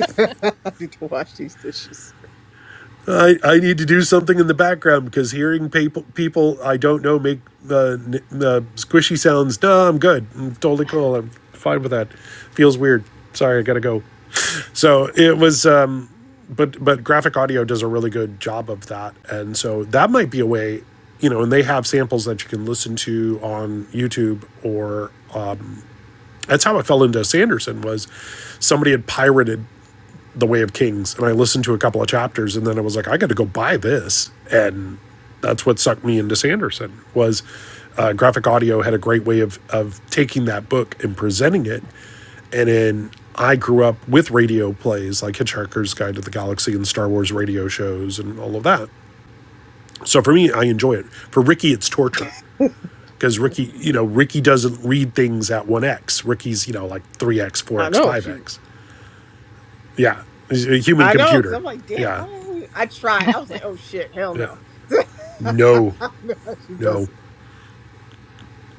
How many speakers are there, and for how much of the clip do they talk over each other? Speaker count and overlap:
2, about 3%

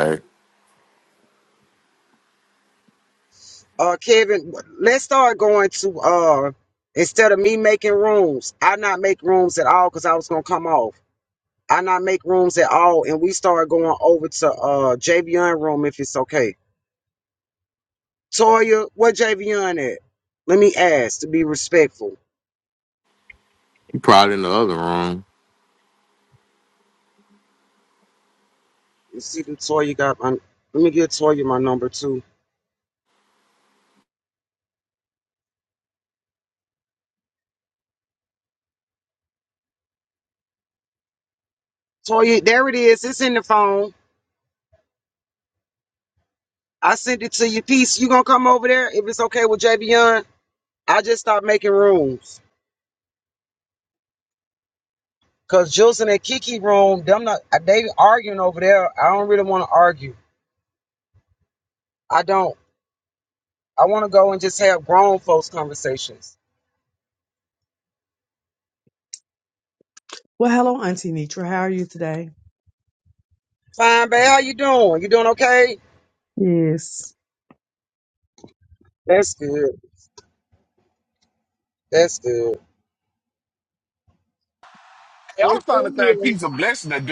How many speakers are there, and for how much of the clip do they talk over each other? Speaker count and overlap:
4, about 1%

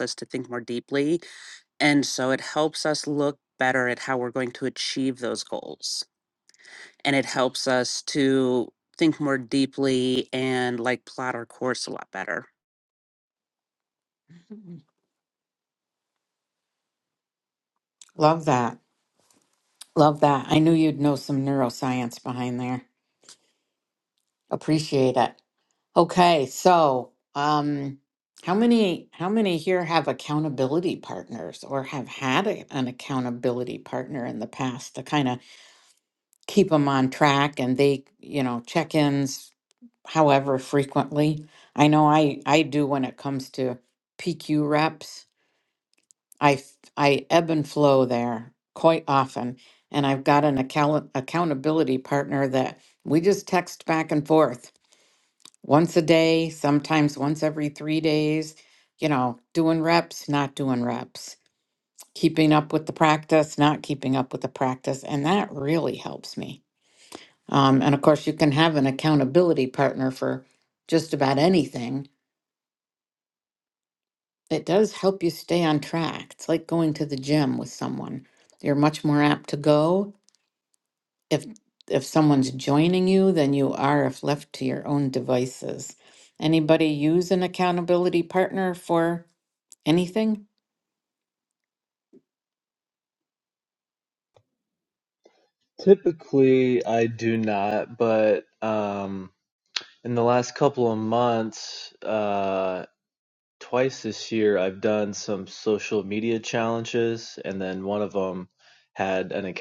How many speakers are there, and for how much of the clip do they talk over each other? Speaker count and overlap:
3, no overlap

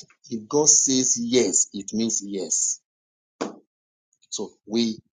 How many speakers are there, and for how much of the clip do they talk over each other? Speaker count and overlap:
1, no overlap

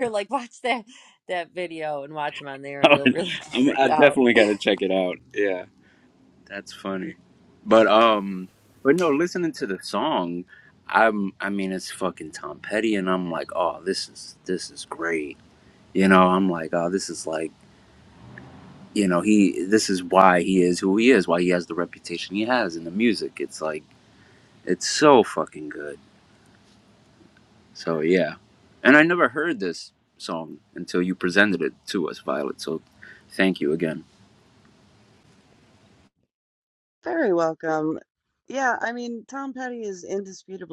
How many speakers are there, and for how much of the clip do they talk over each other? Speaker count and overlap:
3, about 3%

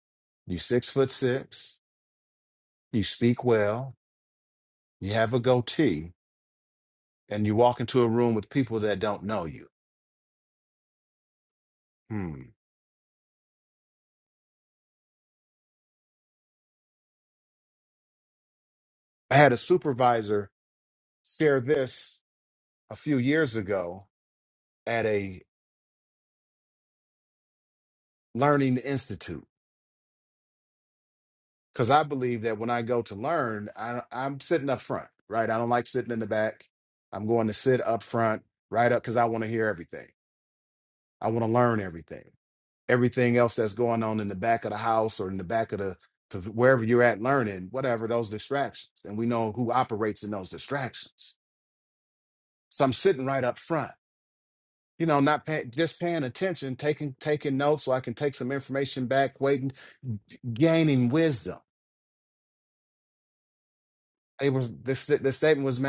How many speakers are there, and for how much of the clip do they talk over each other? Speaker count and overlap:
1, no overlap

